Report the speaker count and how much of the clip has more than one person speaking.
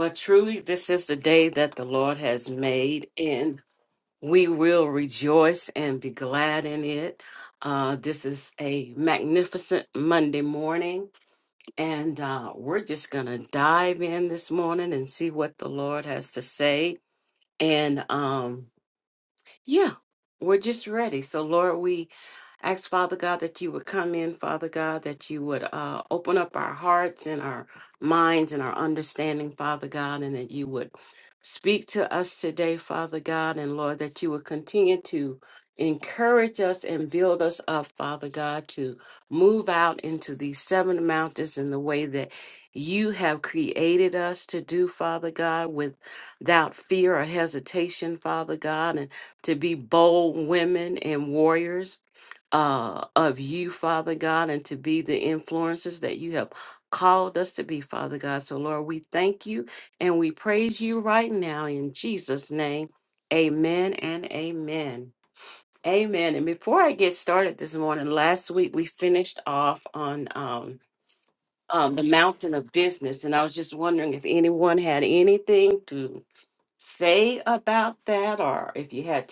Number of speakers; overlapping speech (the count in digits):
1, no overlap